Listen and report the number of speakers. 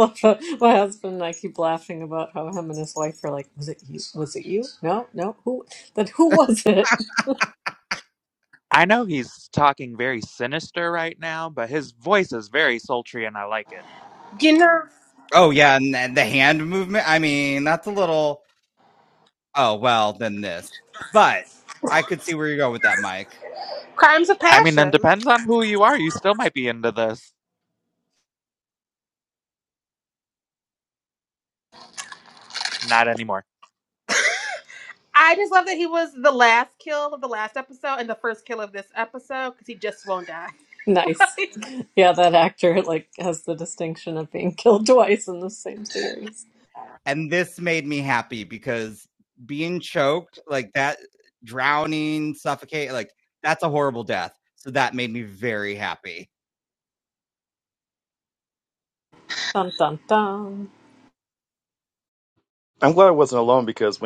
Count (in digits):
5